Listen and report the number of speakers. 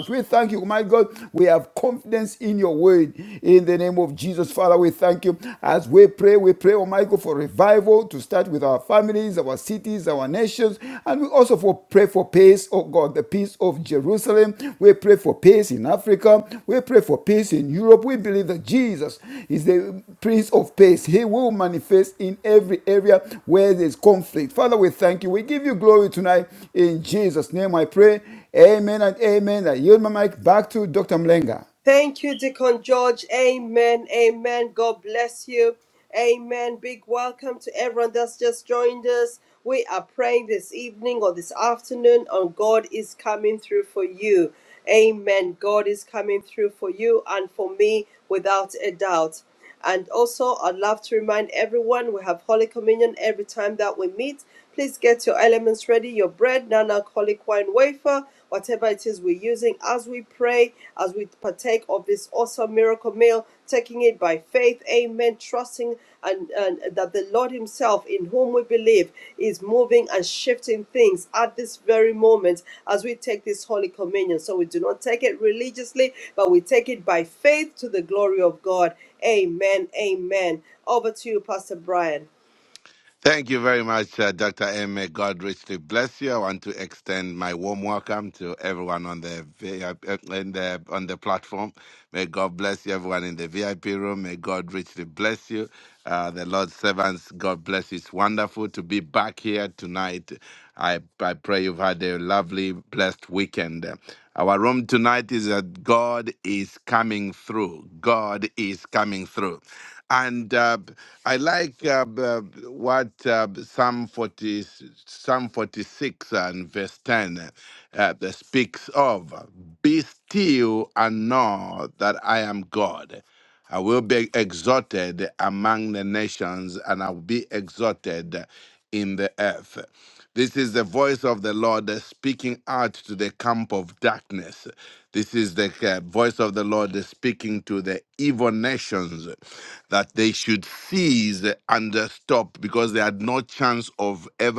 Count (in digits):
3